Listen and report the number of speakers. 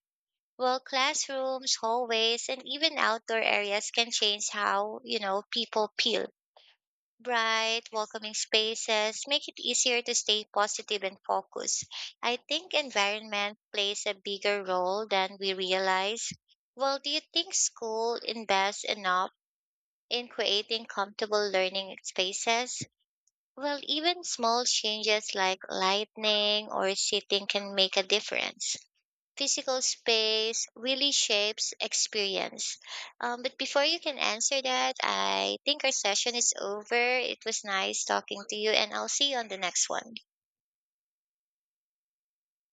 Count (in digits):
1